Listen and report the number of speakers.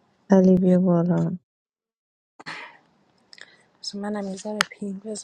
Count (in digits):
2